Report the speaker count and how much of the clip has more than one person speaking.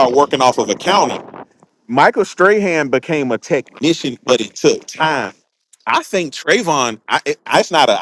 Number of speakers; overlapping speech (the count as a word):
one, no overlap